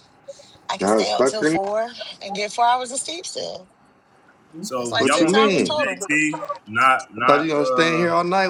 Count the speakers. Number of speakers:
3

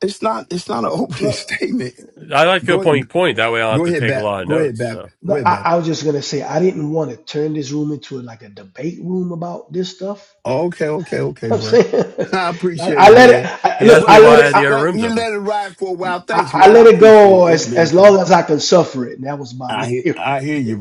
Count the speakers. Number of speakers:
3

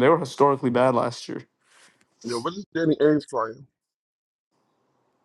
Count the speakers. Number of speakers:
2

